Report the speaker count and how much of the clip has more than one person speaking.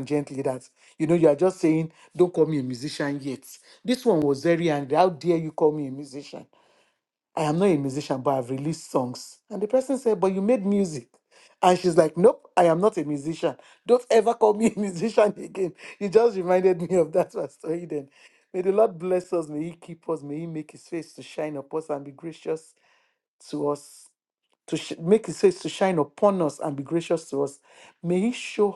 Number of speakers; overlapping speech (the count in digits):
1, no overlap